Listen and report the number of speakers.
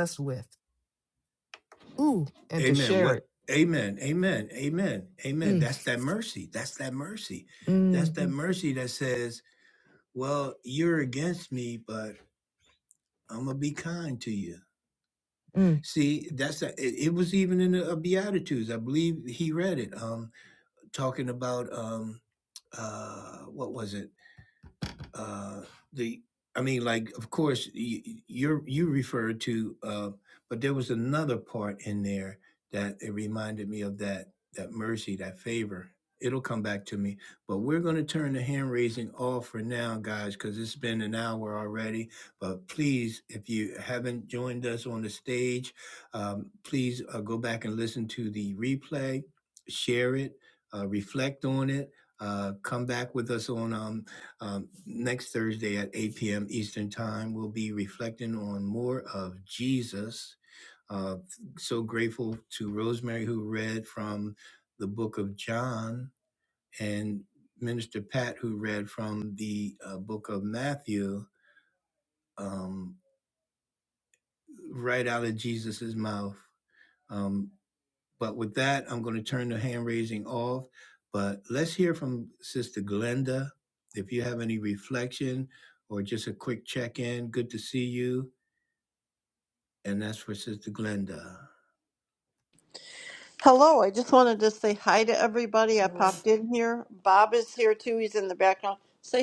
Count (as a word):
three